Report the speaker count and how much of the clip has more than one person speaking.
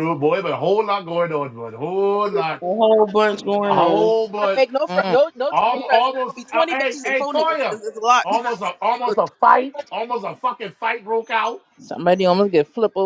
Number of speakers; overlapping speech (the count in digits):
4, about 25%